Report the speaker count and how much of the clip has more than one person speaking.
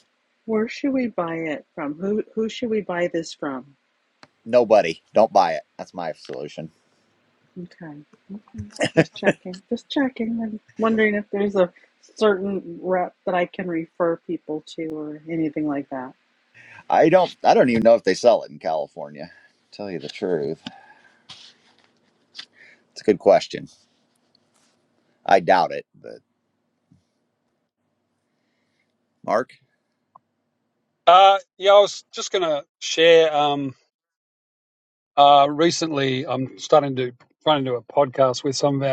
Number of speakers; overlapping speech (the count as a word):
three, no overlap